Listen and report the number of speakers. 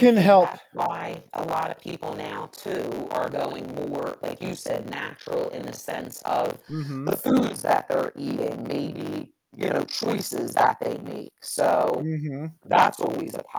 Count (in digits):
2